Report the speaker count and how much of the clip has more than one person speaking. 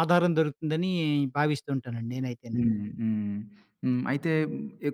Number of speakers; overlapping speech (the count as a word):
two, about 1%